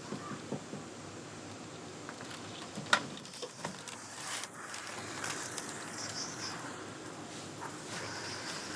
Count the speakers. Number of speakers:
0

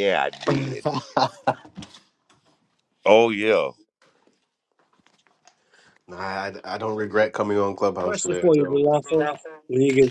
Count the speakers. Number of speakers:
3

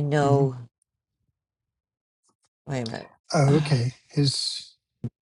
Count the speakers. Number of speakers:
2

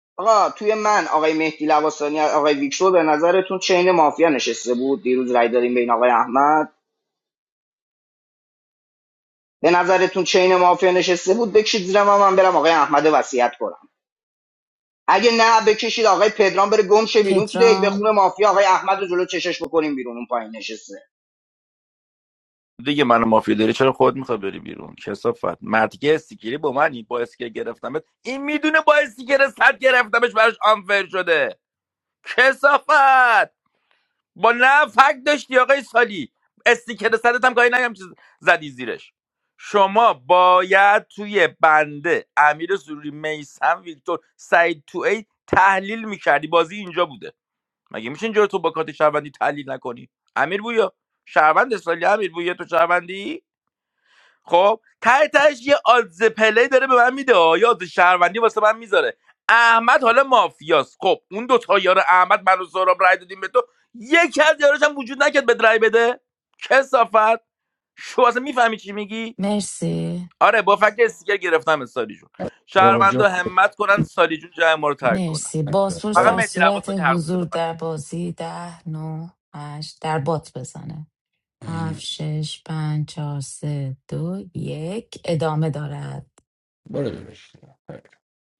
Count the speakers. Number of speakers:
4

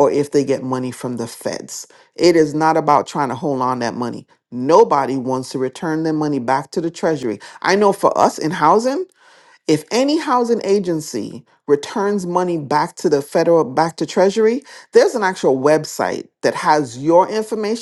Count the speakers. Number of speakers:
1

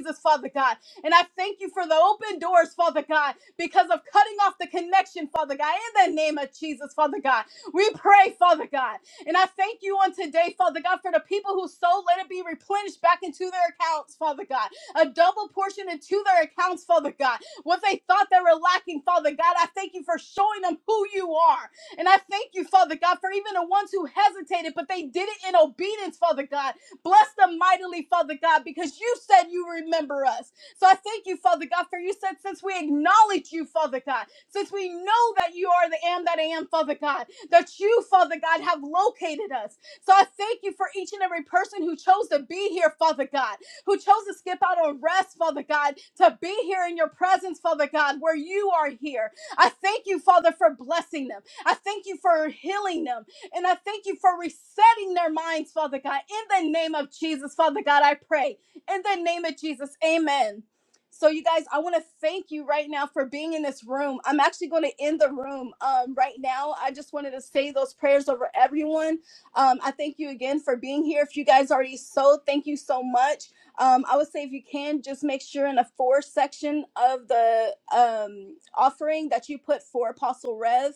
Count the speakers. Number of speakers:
1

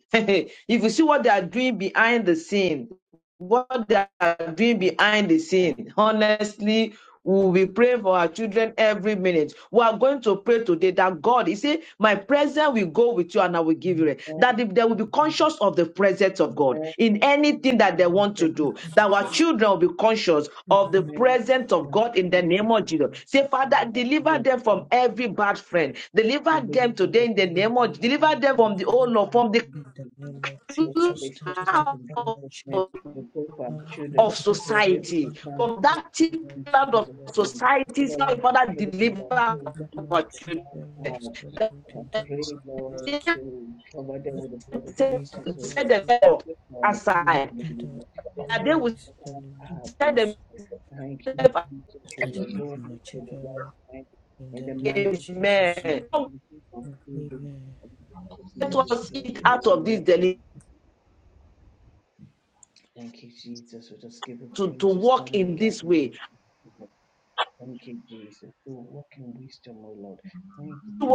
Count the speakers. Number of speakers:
3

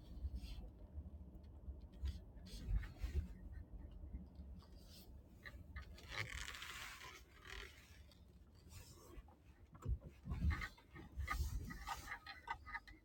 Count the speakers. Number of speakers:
0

